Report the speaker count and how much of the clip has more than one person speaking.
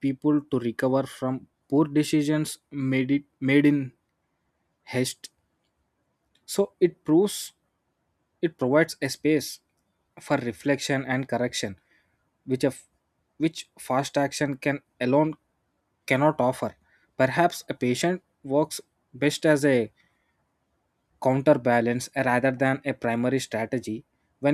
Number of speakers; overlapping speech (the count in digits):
1, no overlap